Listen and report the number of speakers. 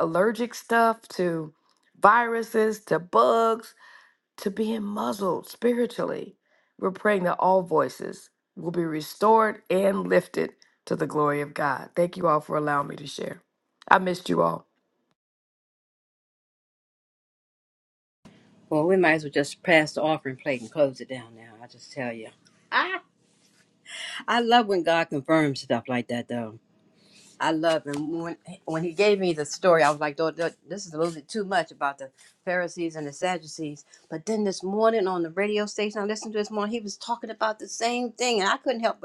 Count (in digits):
2